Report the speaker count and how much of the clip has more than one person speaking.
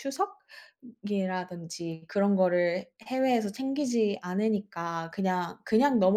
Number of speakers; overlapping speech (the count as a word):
one, no overlap